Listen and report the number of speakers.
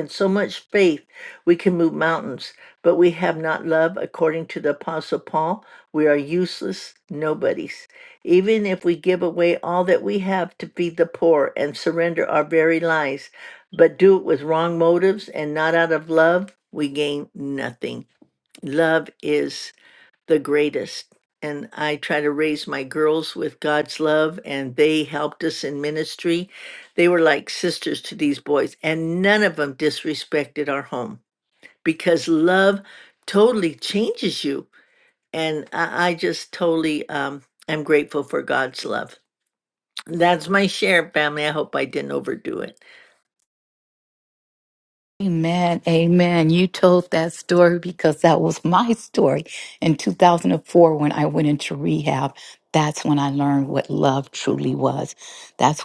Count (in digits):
2